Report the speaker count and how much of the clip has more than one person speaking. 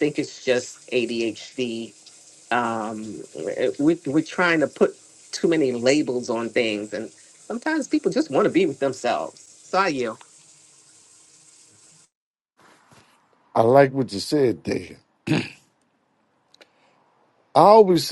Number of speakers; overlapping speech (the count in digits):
2, no overlap